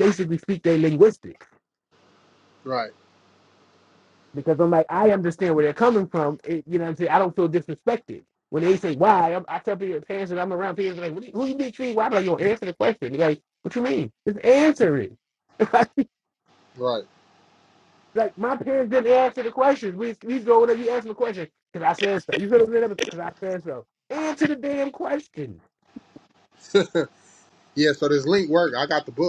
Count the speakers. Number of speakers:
two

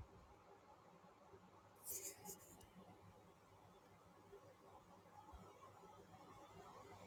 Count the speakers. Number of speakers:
zero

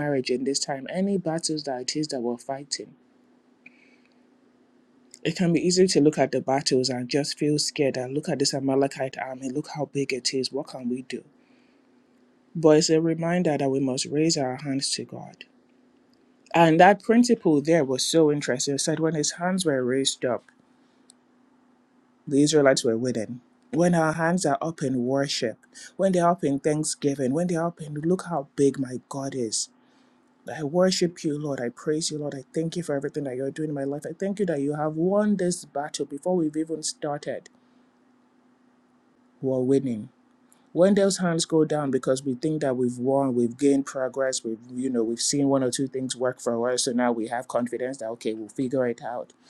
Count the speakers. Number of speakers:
one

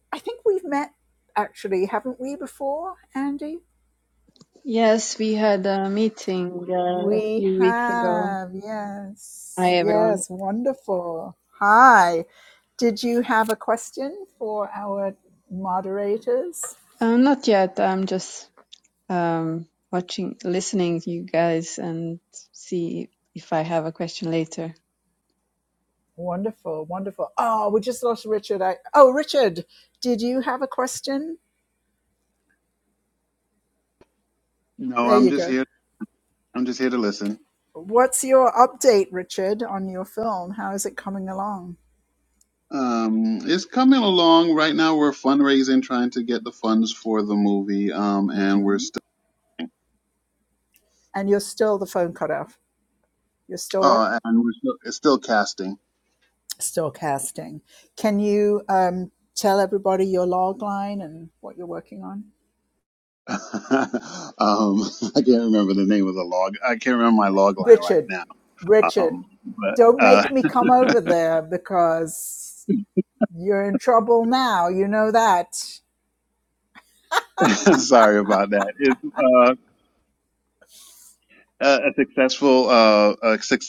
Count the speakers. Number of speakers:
three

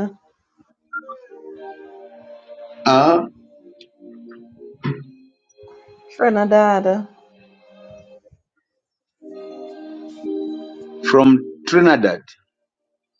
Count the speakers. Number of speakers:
two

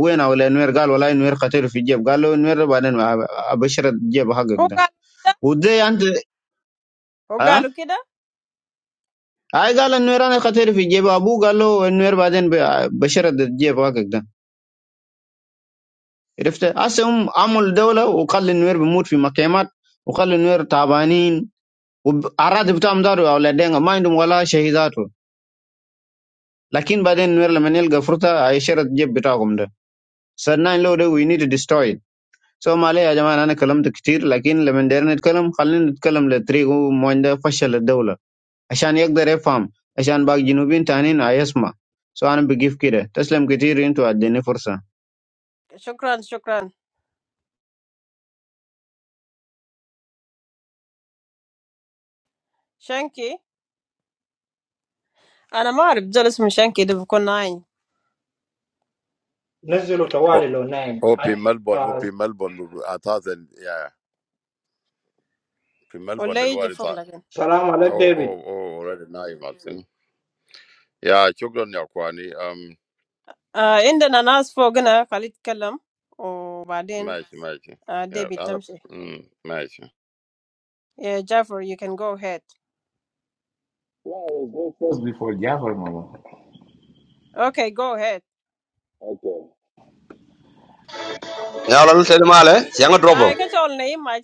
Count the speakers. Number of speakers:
six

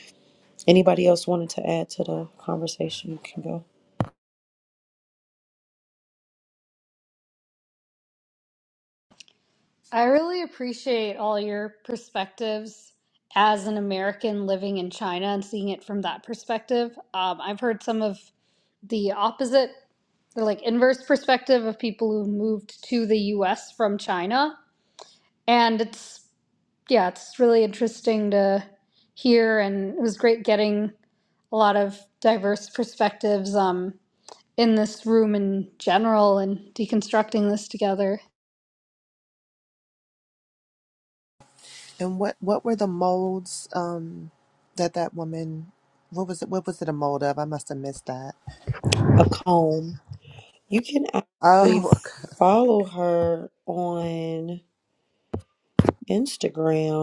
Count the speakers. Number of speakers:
three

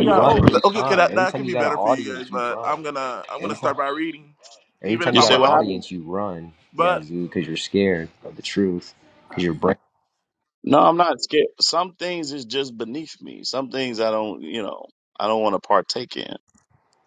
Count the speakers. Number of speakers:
three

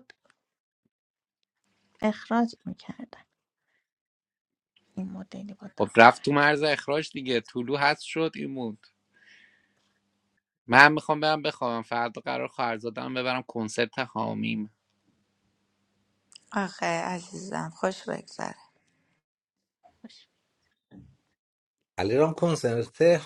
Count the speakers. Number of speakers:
four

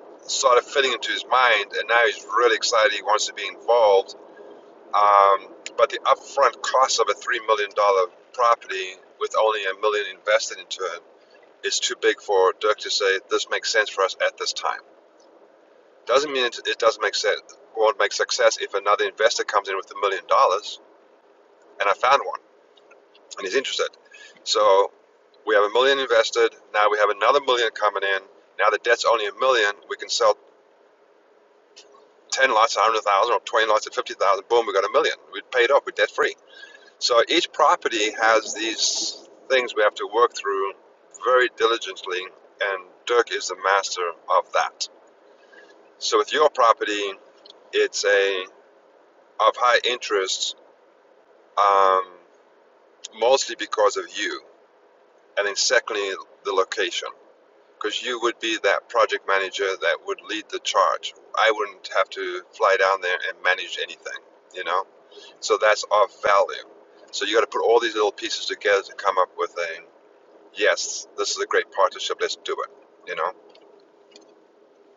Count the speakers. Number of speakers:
one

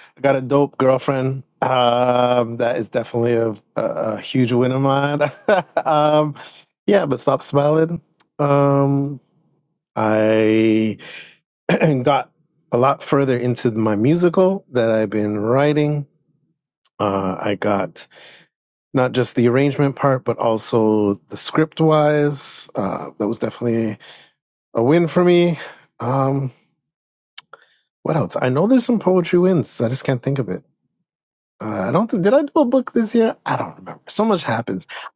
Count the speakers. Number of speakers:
one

